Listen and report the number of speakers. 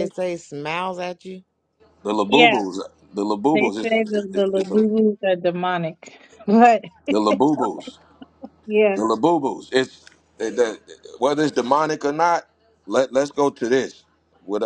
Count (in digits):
3